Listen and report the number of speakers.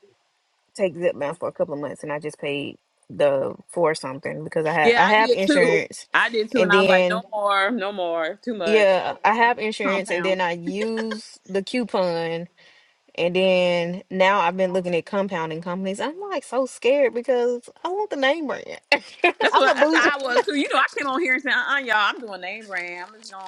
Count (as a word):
two